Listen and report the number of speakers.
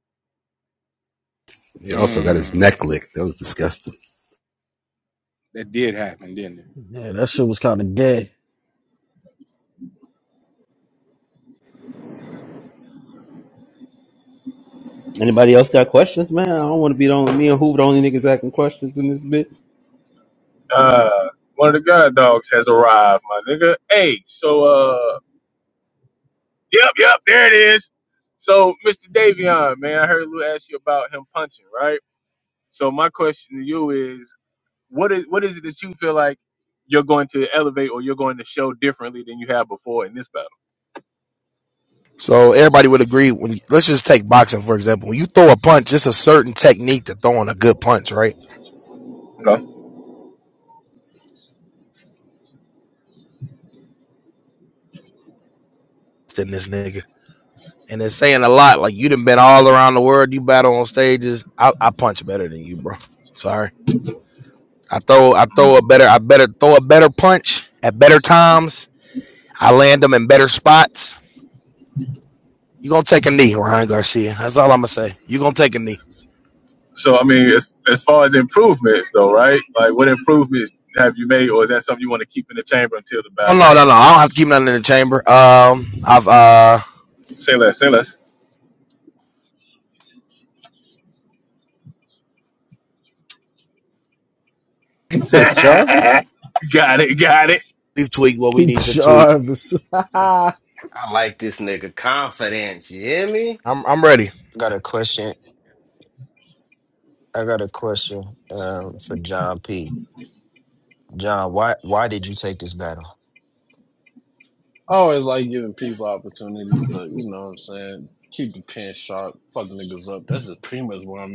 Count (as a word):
eight